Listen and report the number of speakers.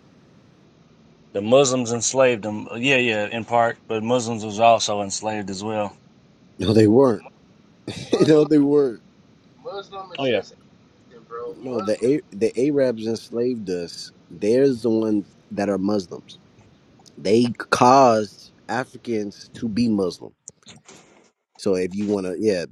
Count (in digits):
3